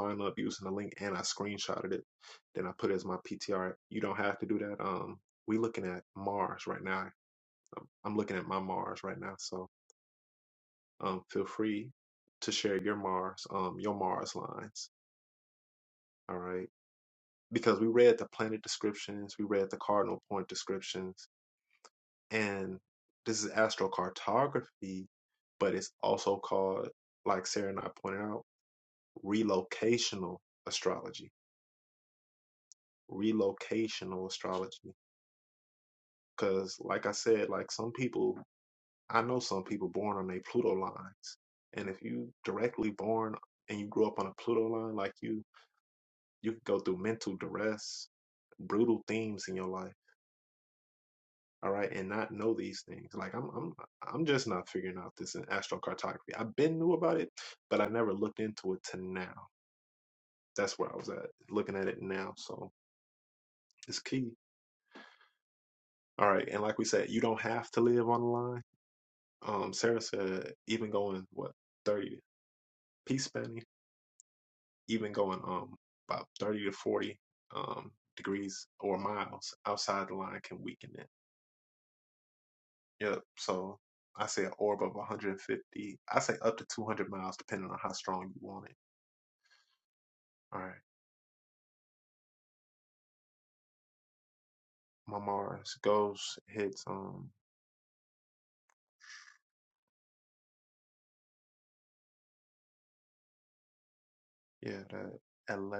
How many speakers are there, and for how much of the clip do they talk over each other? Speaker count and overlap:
one, no overlap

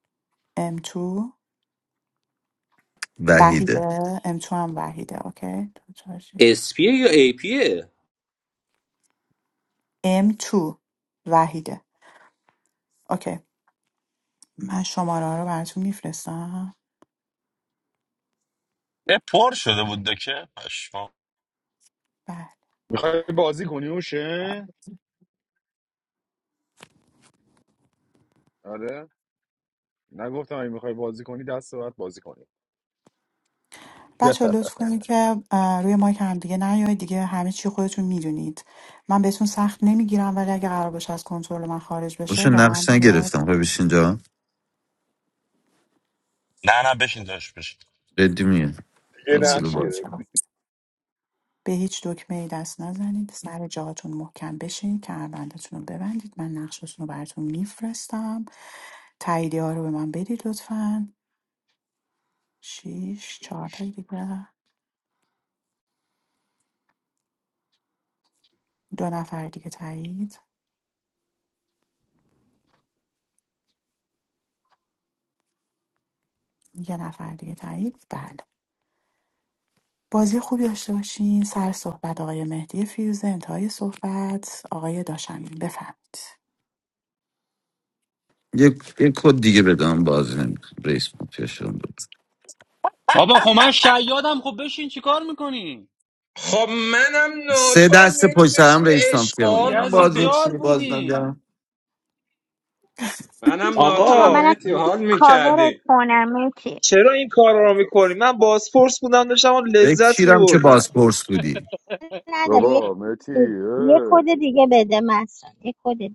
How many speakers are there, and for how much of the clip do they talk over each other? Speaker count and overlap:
nine, about 8%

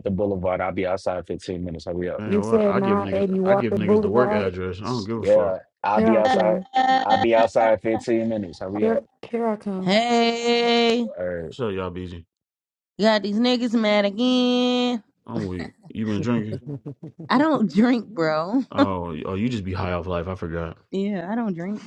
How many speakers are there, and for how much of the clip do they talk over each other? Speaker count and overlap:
four, about 17%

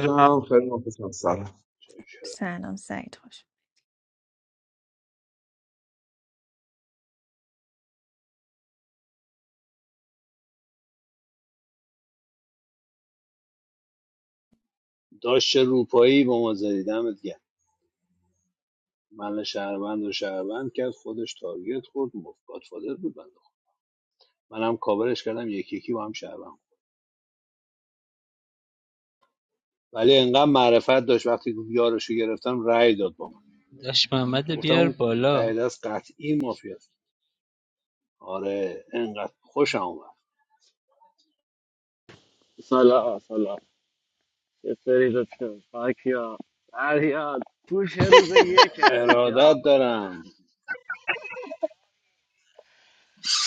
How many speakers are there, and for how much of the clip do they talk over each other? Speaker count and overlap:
five, about 2%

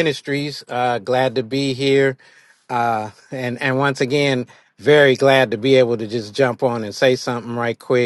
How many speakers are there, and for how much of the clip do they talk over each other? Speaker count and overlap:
one, no overlap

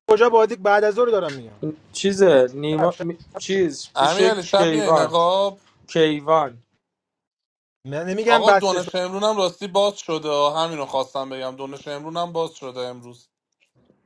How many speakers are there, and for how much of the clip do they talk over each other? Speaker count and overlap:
three, about 15%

